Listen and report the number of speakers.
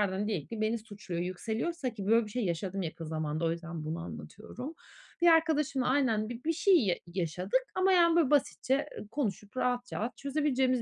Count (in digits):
1